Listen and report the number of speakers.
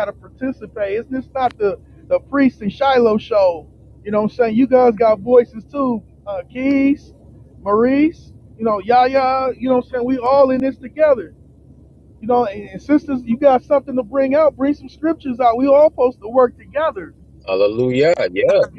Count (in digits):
2